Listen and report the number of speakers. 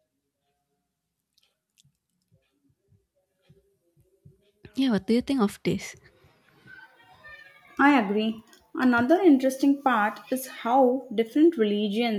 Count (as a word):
two